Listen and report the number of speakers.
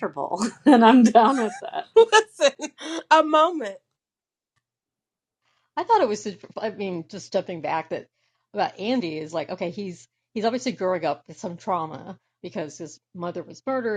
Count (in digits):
3